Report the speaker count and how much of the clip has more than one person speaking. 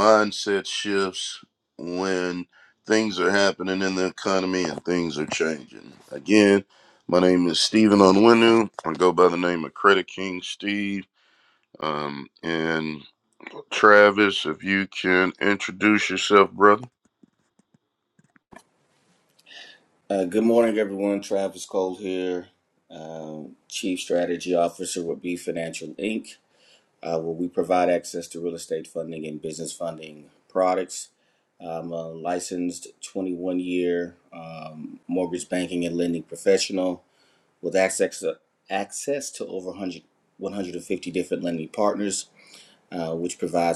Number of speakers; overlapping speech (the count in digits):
2, no overlap